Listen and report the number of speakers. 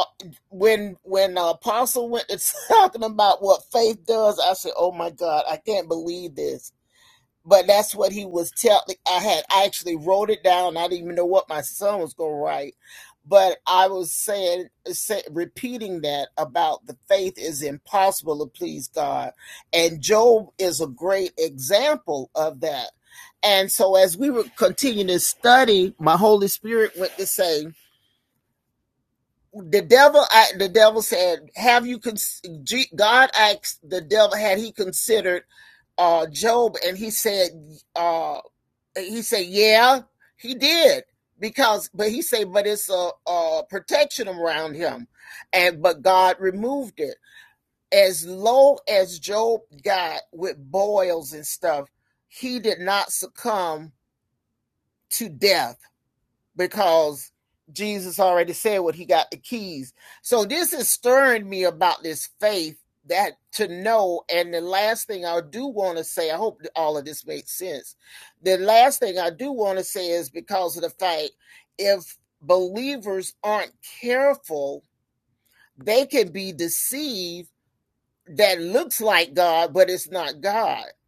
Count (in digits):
1